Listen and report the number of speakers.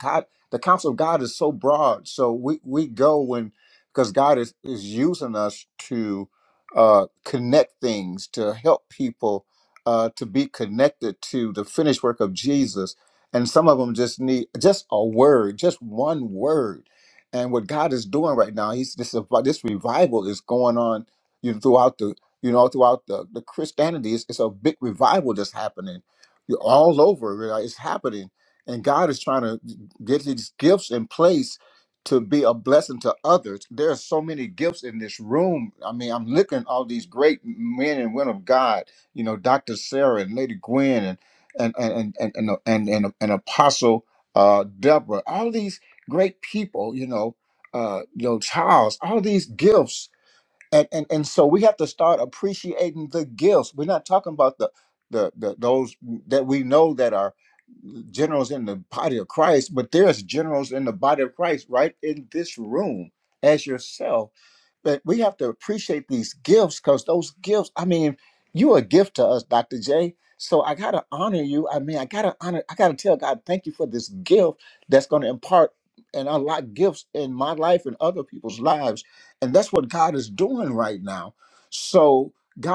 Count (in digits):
1